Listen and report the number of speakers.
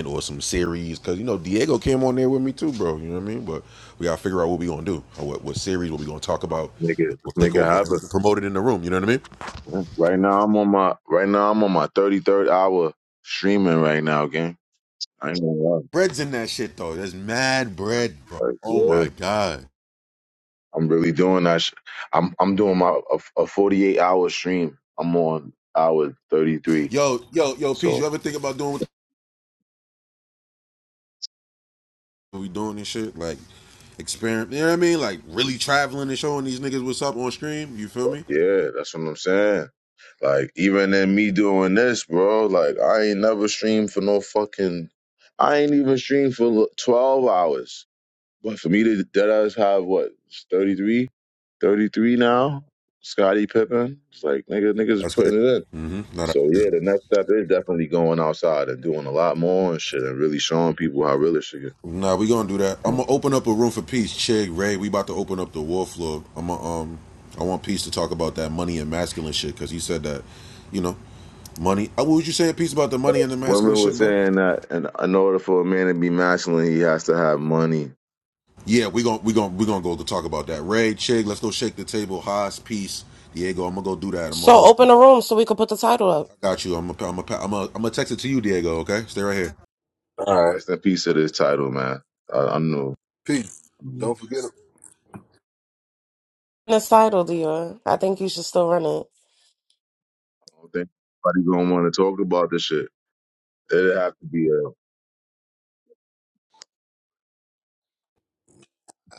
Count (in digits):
4